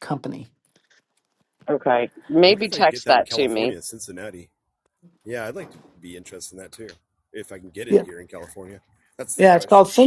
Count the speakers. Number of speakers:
three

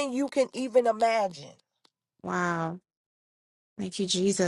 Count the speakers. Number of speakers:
two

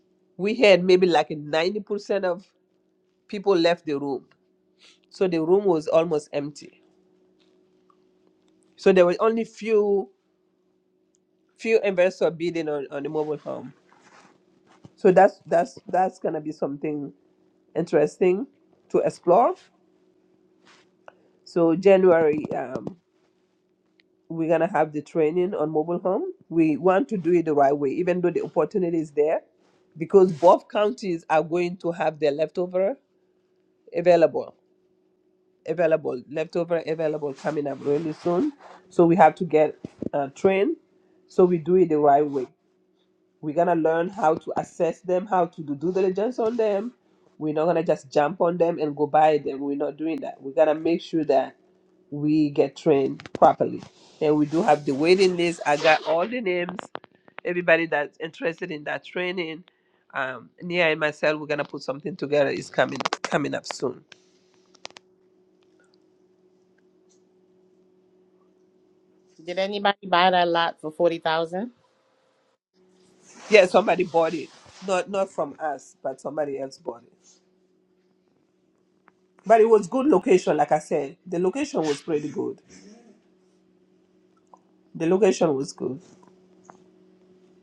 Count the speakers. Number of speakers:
two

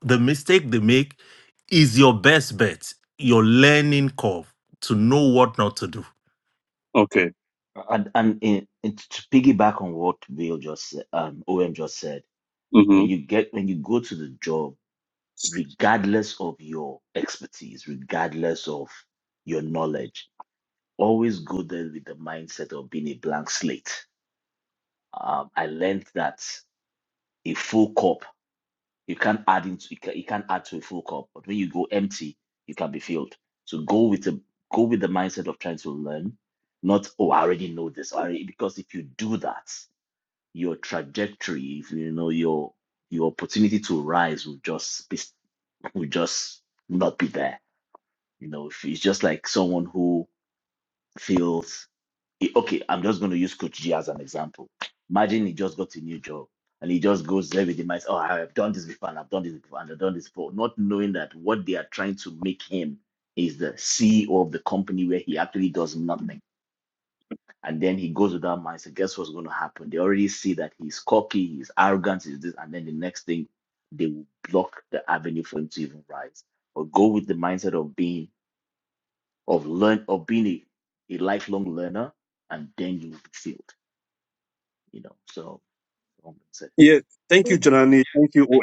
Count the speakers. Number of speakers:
three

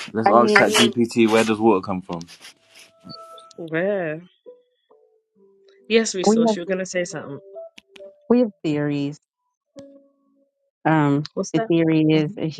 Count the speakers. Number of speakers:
three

